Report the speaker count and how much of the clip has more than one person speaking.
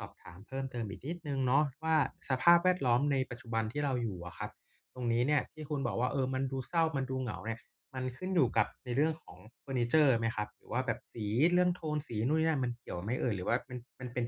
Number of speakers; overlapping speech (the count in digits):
1, no overlap